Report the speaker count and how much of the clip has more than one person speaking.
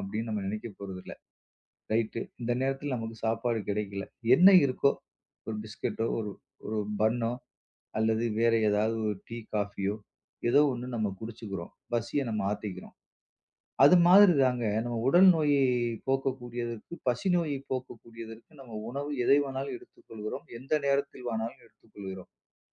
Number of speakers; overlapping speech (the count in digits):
1, no overlap